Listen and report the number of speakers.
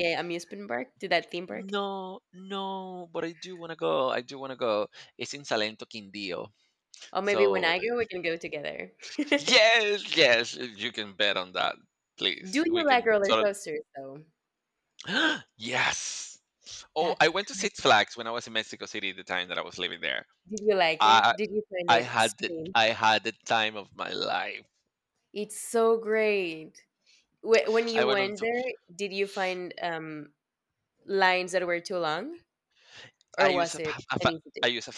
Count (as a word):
two